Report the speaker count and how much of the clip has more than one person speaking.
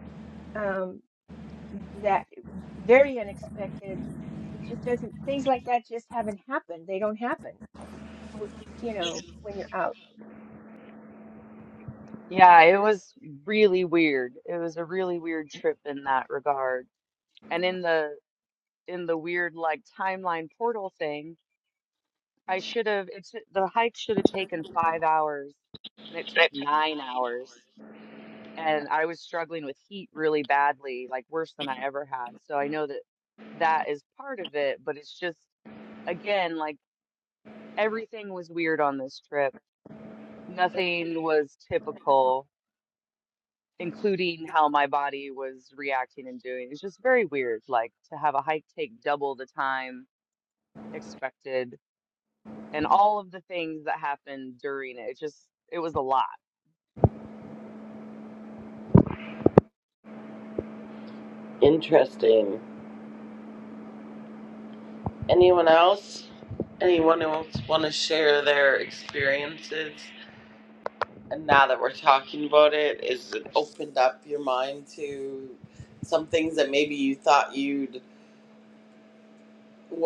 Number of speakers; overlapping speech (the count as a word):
three, no overlap